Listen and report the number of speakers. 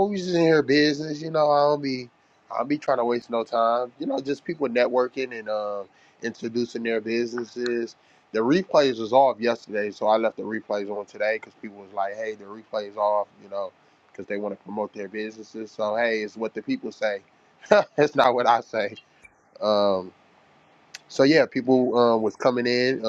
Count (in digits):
1